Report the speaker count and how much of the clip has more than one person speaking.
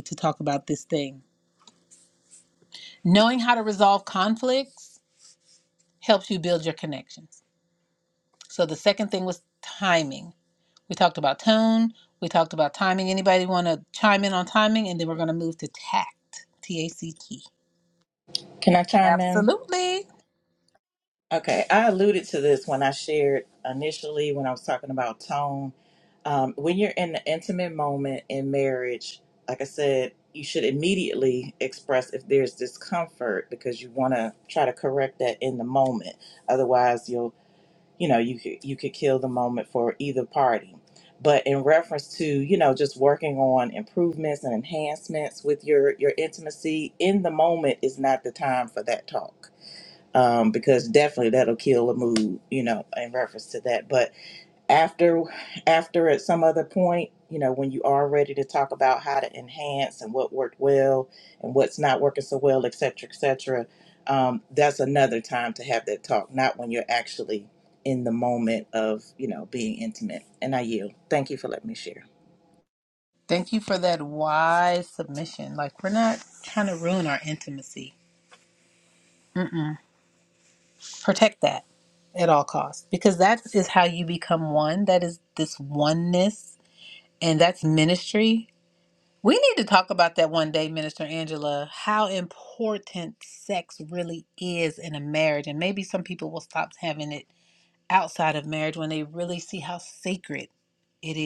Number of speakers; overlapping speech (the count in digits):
2, under 1%